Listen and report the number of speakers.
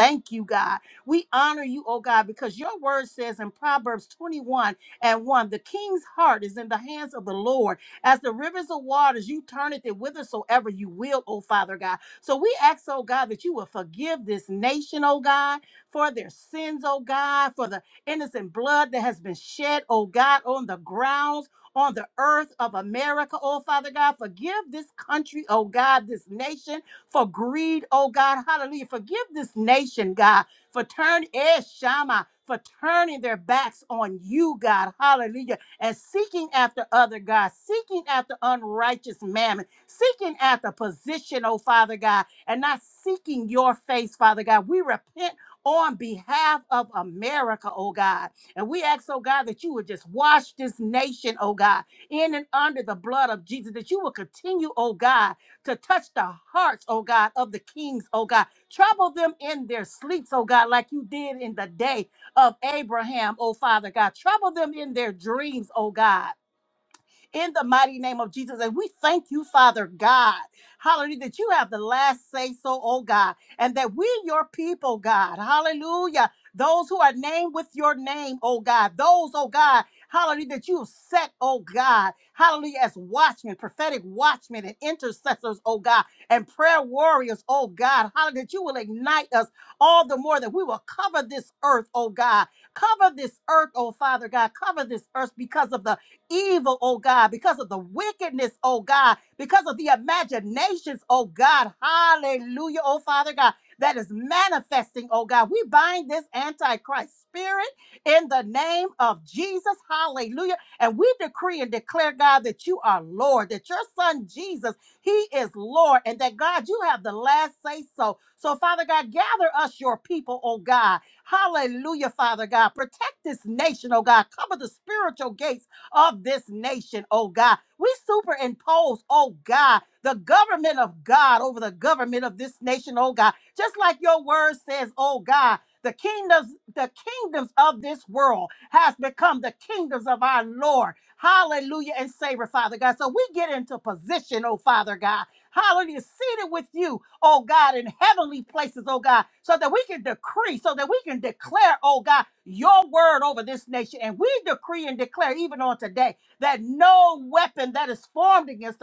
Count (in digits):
1